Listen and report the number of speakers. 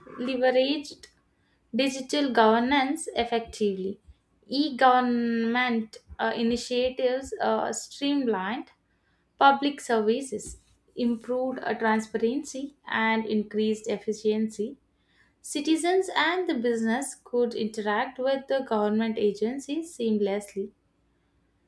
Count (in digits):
1